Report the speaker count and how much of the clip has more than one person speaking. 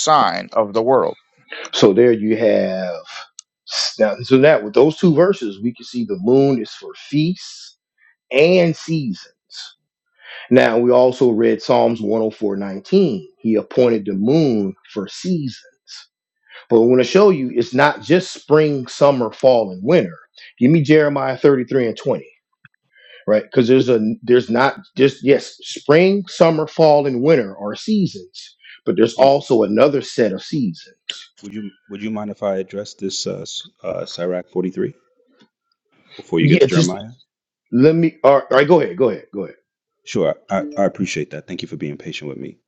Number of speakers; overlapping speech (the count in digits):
3, about 1%